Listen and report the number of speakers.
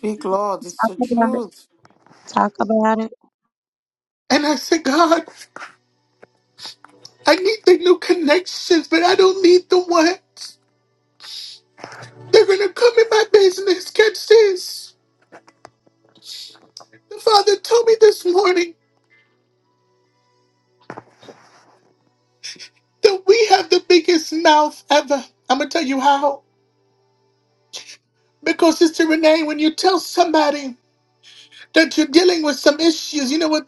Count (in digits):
3